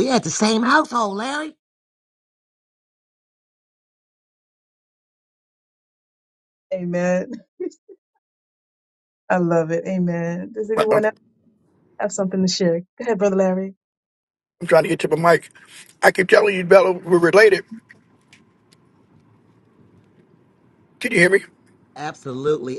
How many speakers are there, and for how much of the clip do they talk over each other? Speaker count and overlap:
3, about 1%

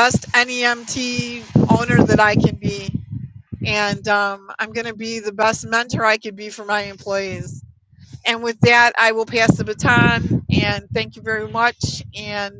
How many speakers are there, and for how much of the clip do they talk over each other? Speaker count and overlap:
1, no overlap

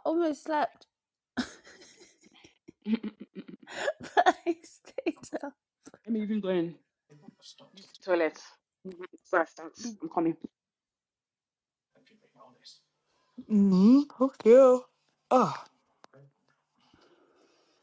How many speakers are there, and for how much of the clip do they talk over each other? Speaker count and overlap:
3, no overlap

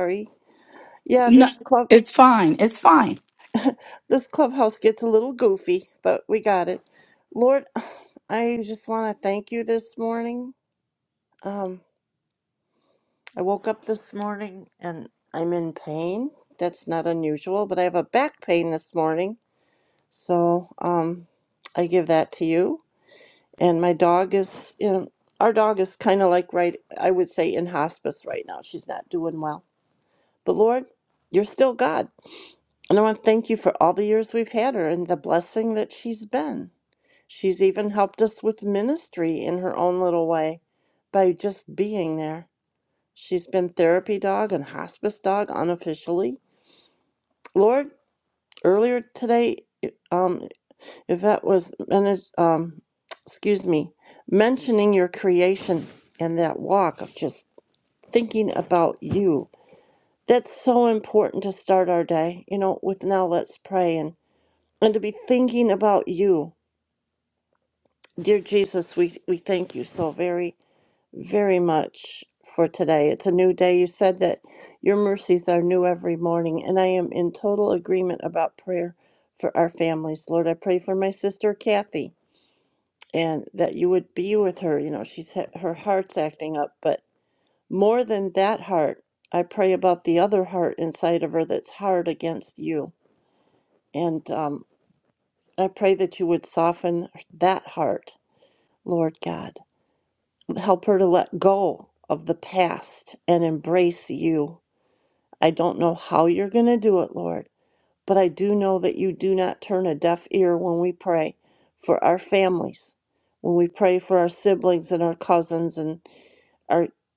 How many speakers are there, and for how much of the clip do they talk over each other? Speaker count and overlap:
2, under 1%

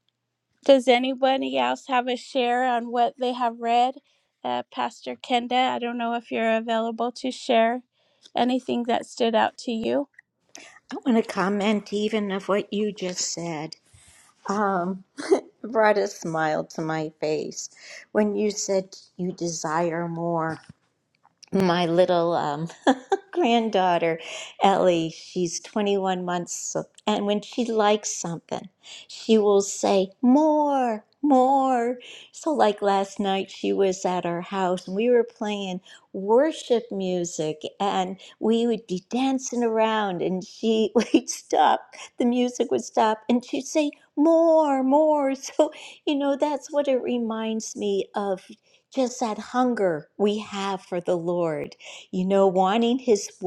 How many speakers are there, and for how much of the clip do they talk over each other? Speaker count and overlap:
2, no overlap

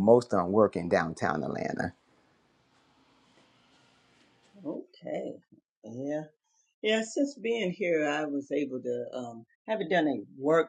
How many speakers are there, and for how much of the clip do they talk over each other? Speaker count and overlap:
2, no overlap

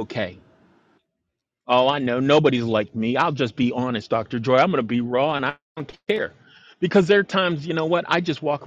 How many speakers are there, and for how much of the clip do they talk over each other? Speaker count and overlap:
1, no overlap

